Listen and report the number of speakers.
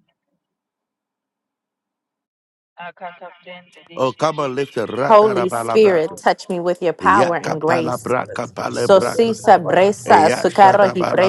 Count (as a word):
three